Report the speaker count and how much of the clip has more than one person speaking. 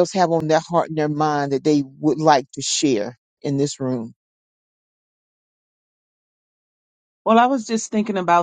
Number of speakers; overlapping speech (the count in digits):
2, no overlap